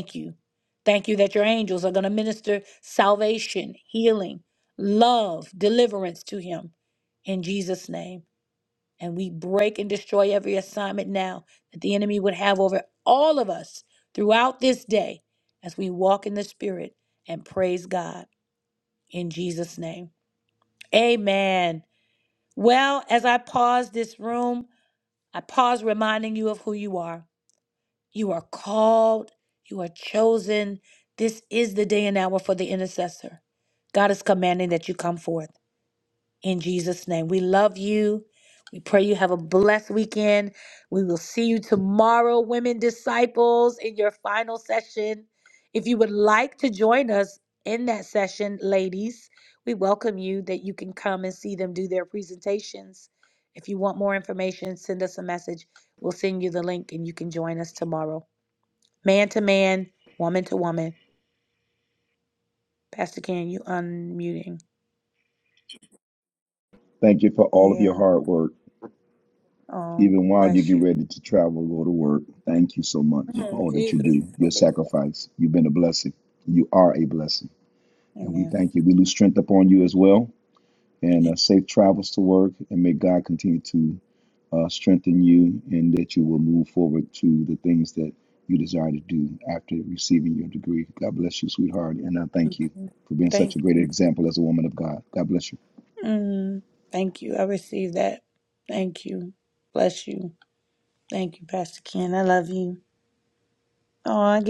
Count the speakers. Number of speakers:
2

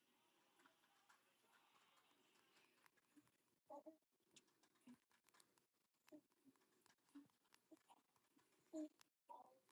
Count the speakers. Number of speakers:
0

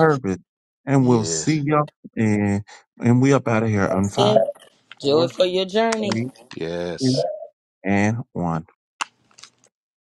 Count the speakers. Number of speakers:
3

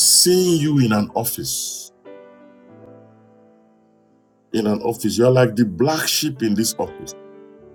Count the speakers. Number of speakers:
1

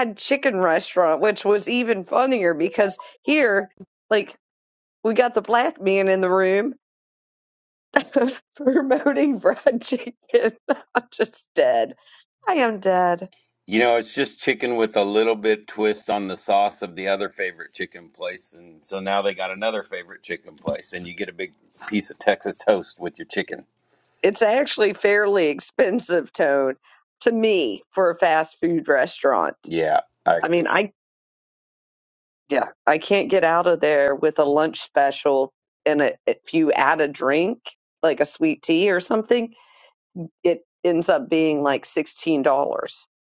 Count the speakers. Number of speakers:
2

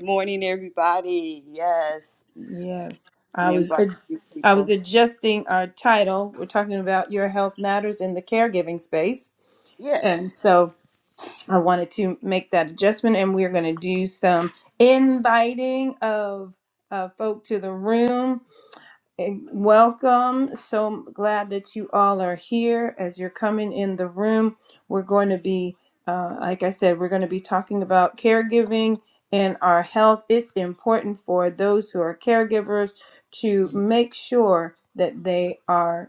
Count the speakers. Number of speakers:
2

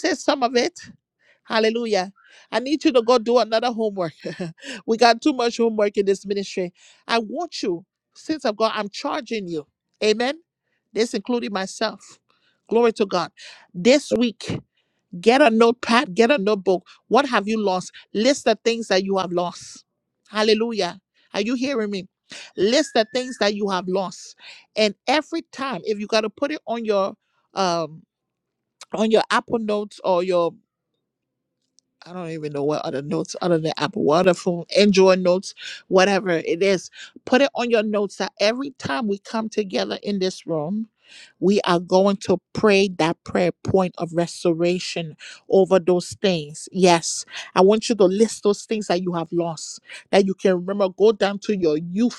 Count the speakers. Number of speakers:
1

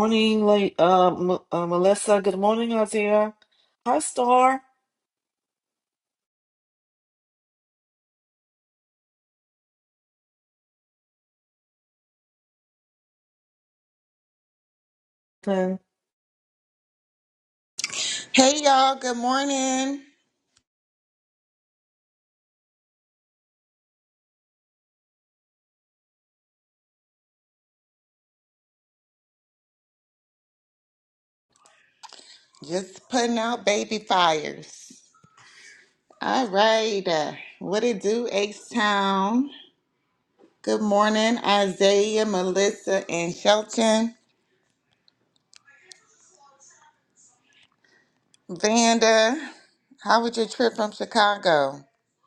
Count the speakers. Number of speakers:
2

